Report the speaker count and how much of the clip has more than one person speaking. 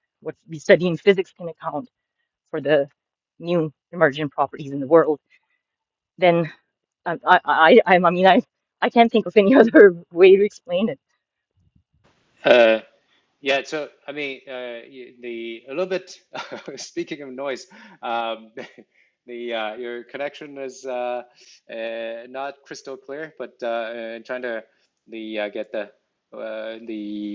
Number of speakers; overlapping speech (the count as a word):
two, no overlap